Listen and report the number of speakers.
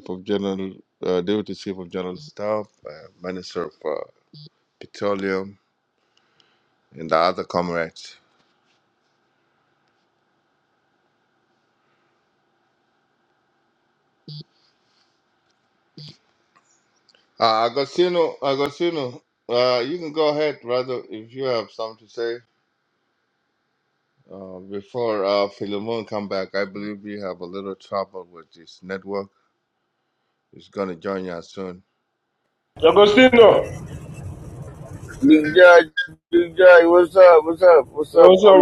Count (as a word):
three